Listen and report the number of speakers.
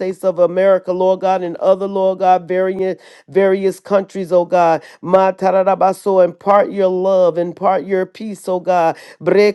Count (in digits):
1